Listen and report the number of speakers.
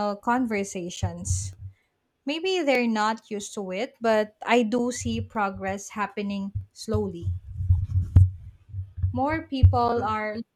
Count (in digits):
1